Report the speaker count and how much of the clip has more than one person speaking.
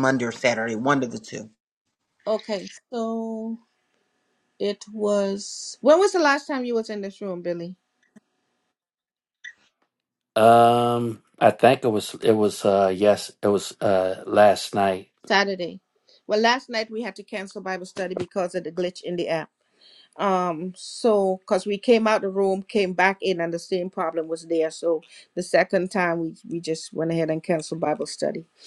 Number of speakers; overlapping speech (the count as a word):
three, no overlap